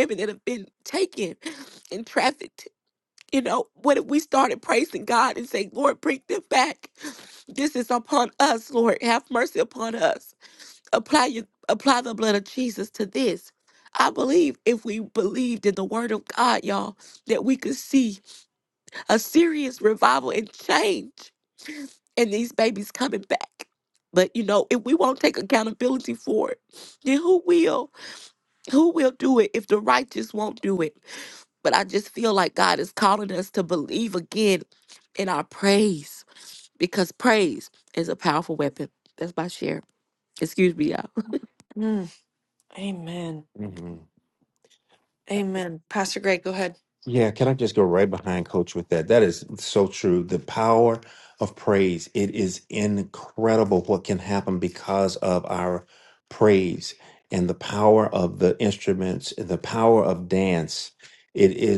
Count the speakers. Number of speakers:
3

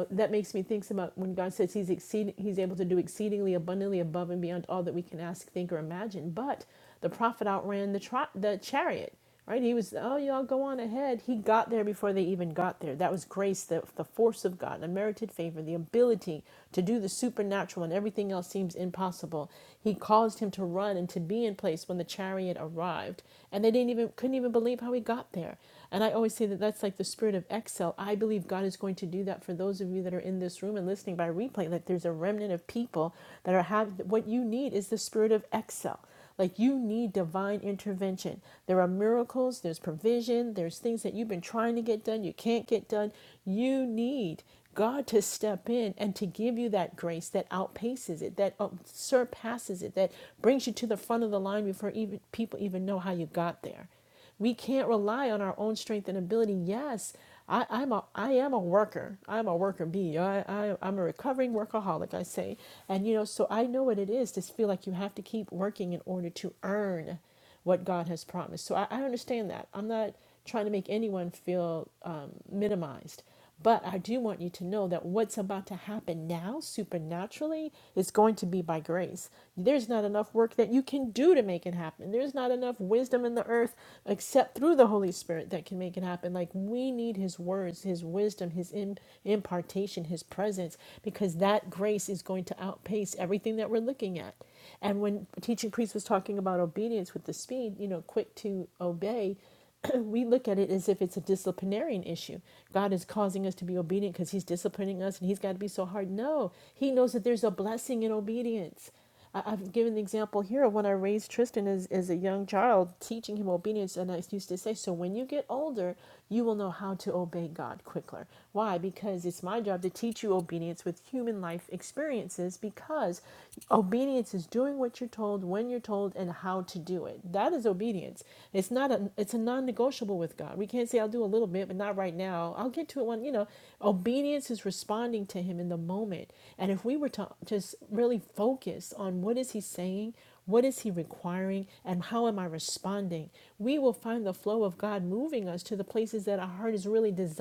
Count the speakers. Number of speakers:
1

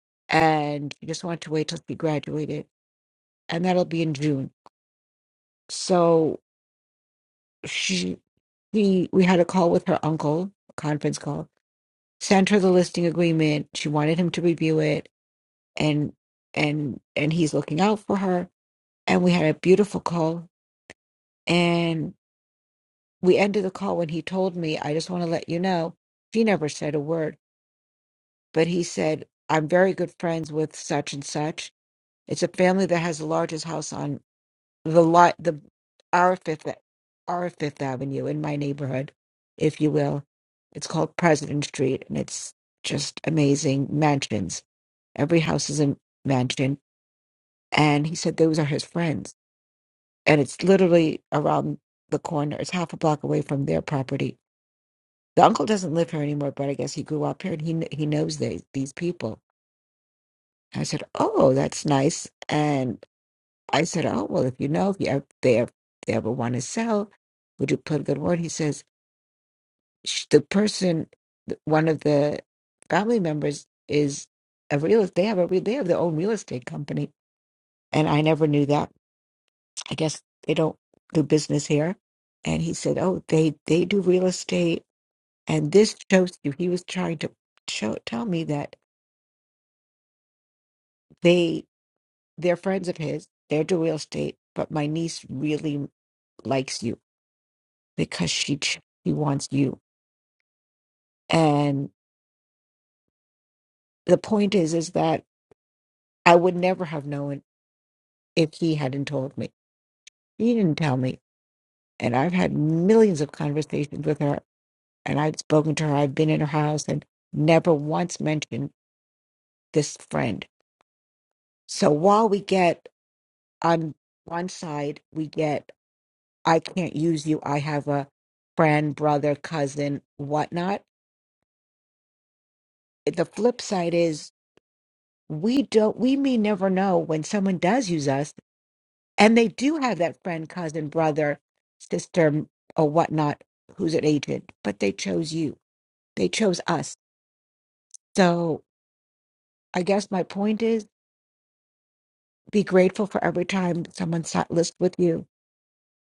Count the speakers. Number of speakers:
1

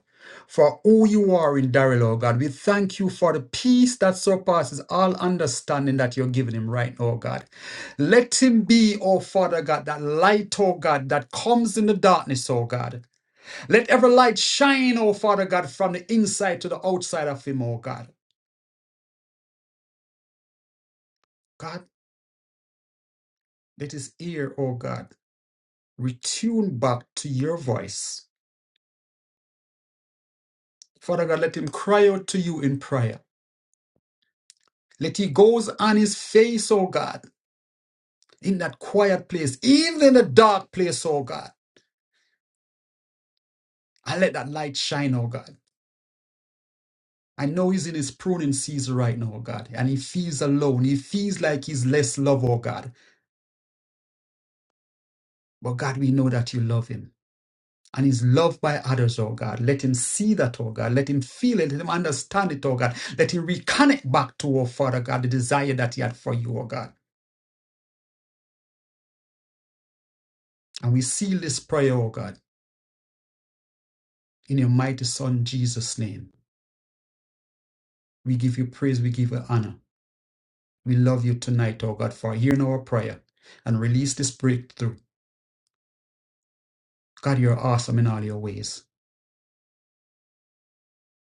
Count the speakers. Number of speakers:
1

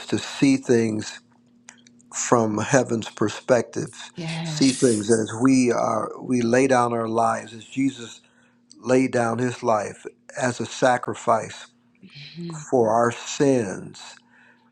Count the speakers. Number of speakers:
2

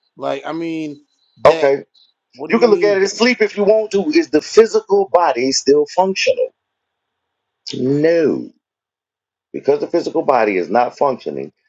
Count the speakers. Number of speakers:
2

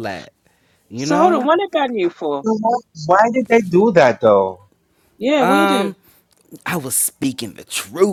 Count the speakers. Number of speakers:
3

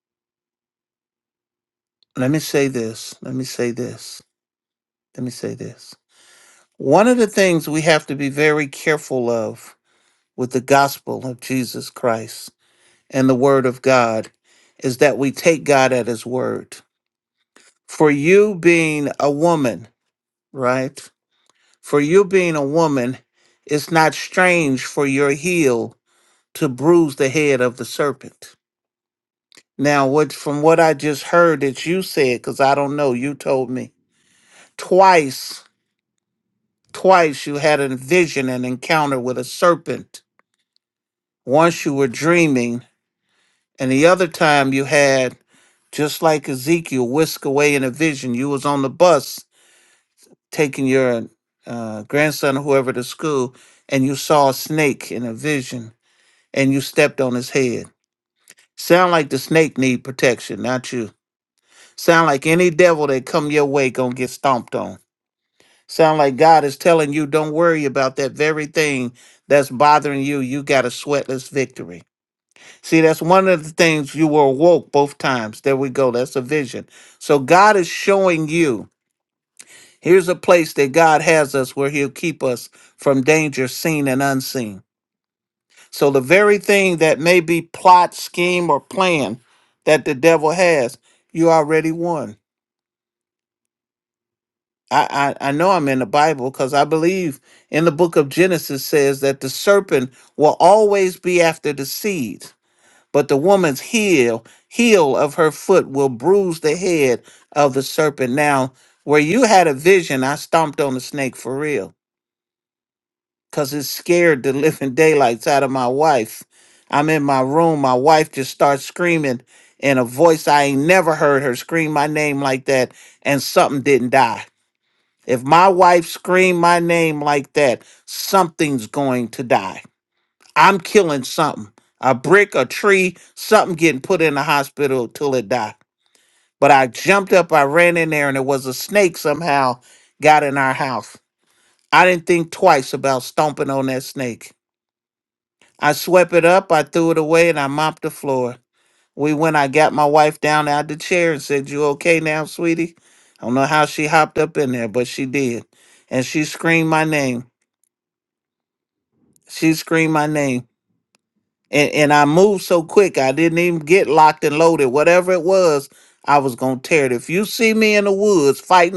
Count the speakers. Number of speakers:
1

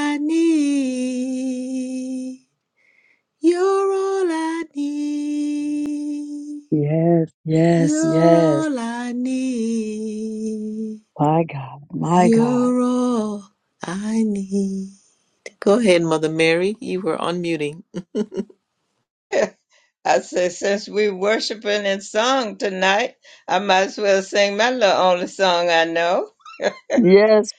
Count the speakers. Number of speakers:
3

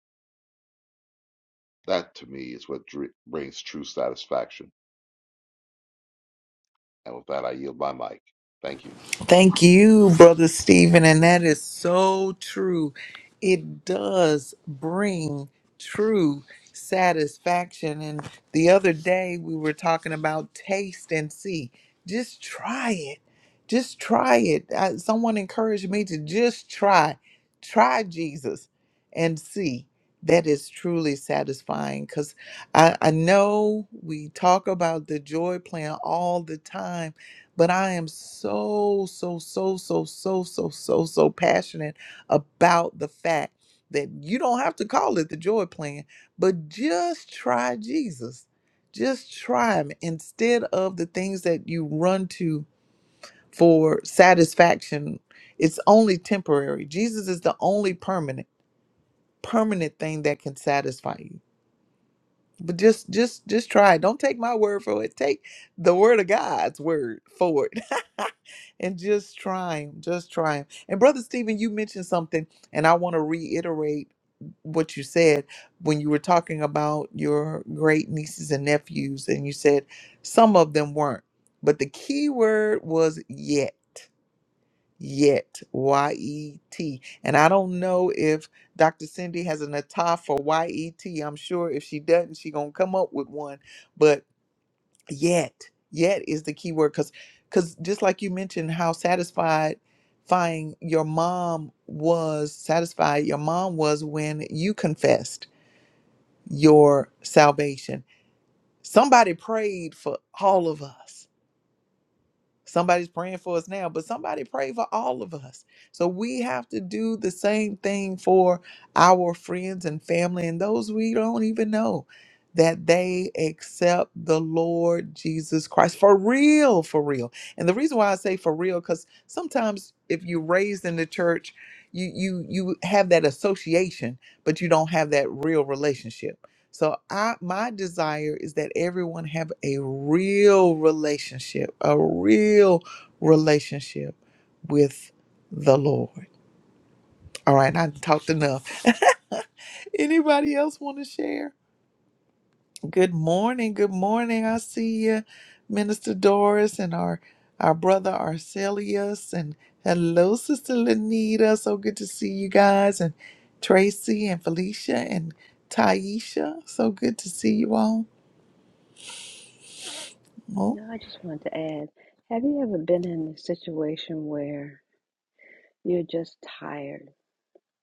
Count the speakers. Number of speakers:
3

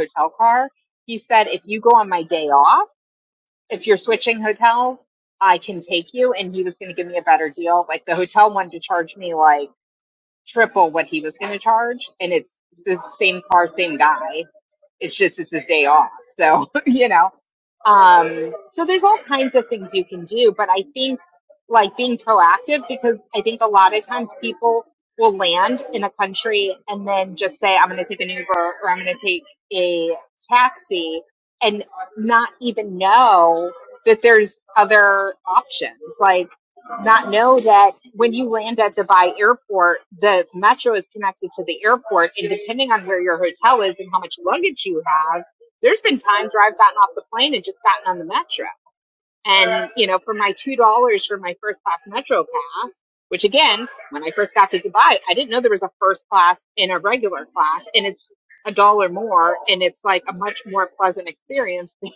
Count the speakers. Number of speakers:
1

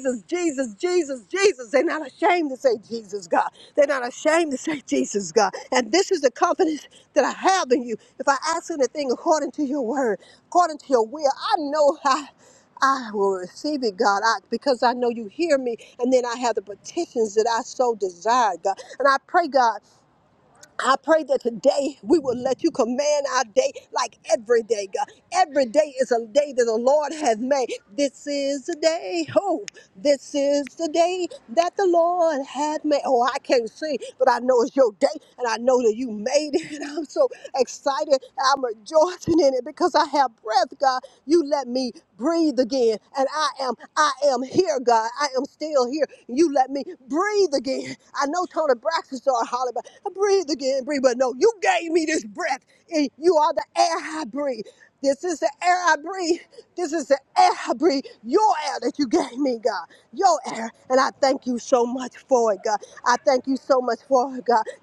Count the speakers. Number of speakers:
1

